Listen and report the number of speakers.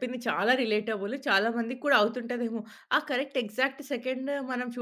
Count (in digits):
1